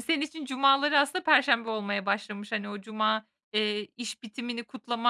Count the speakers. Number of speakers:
1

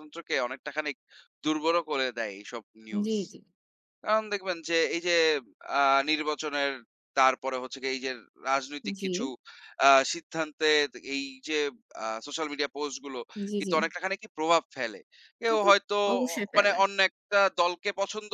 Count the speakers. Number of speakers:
2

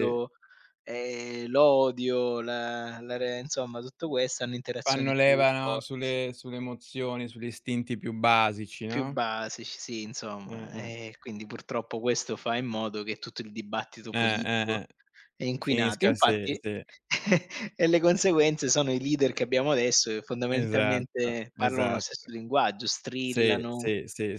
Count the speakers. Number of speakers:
2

